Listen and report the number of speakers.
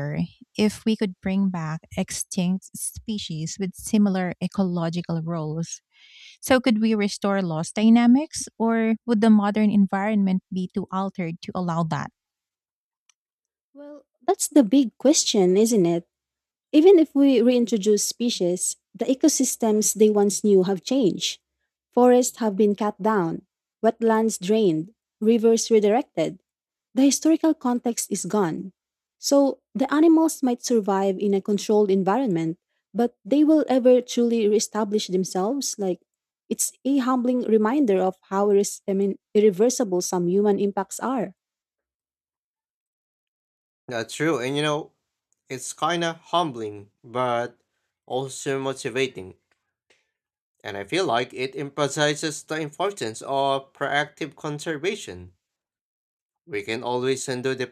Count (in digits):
3